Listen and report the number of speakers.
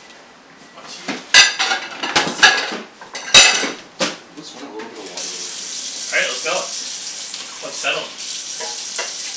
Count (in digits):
2